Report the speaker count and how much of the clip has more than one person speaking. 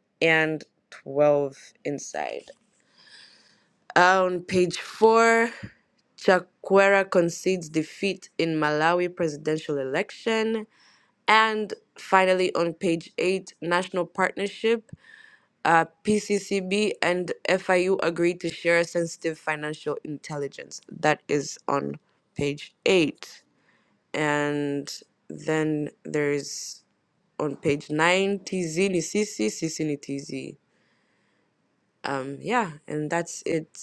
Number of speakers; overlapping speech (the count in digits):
1, no overlap